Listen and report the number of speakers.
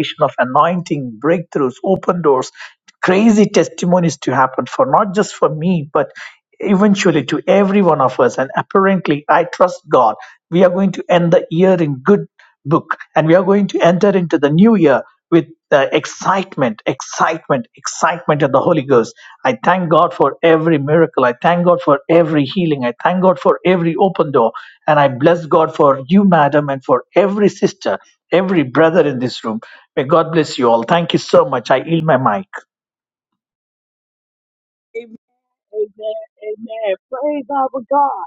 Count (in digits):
2